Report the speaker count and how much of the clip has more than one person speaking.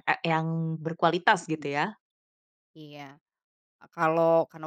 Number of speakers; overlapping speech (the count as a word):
two, about 5%